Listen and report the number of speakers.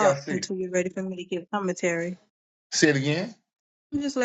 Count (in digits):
2